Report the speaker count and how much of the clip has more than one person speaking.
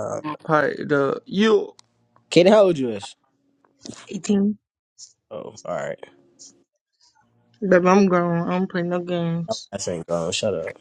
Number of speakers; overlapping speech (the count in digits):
3, about 1%